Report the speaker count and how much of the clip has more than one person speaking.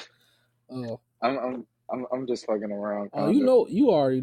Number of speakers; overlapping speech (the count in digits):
2, about 9%